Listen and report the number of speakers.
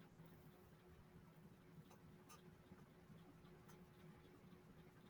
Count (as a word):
zero